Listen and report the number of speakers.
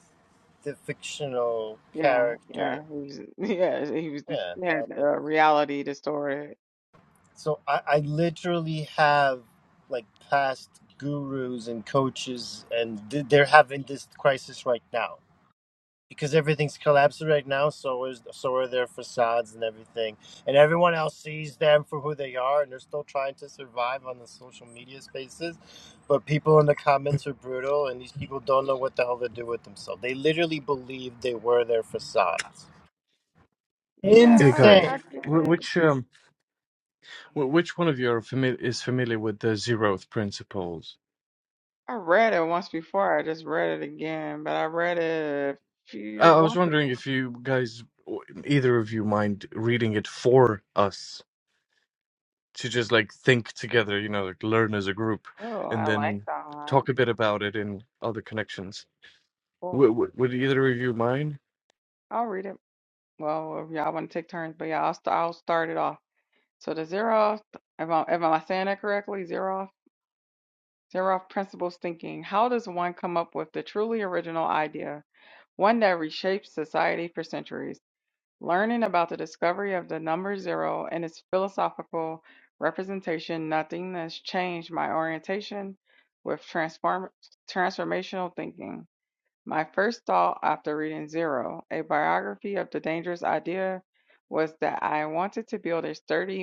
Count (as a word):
three